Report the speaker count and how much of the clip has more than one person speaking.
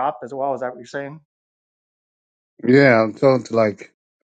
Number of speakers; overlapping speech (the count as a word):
two, no overlap